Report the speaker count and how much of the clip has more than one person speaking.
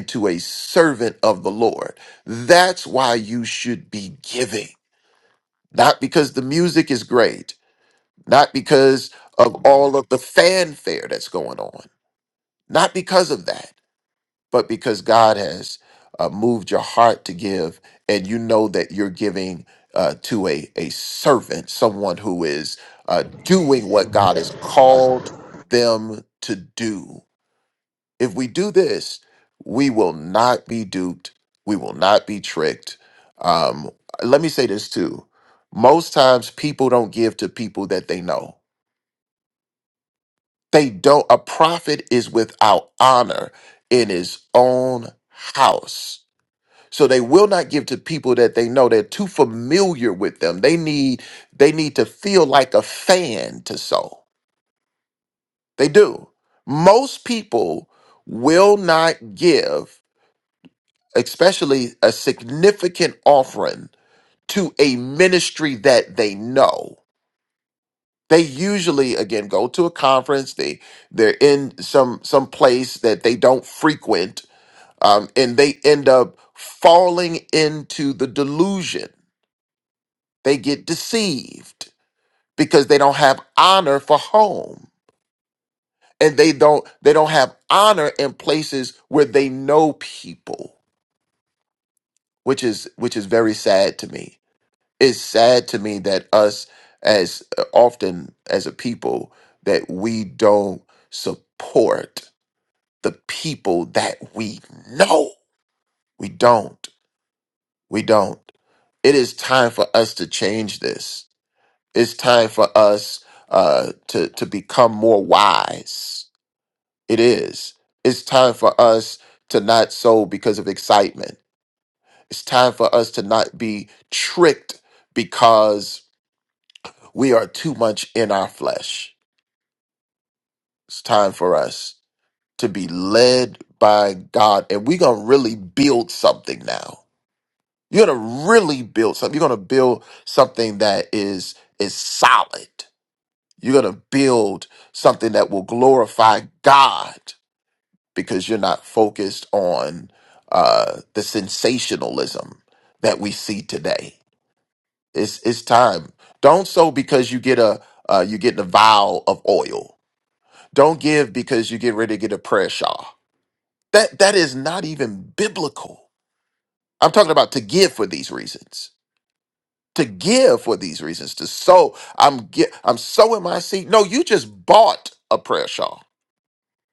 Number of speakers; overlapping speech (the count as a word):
one, no overlap